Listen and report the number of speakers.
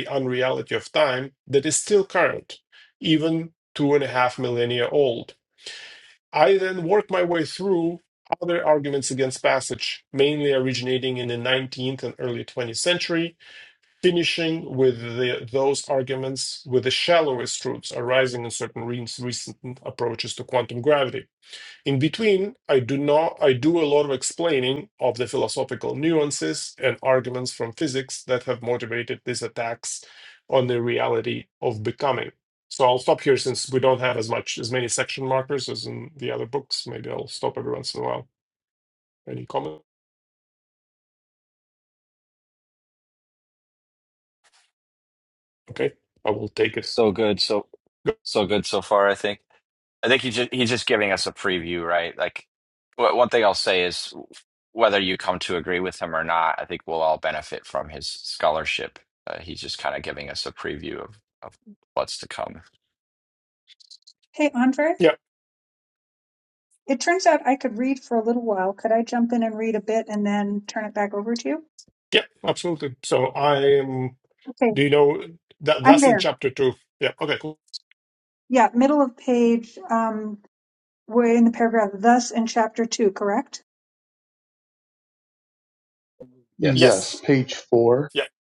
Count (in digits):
4